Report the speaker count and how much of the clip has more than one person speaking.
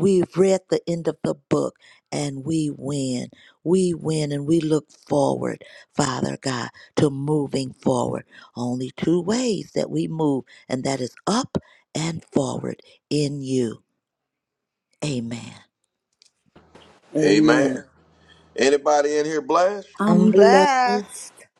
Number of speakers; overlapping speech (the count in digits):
3, about 5%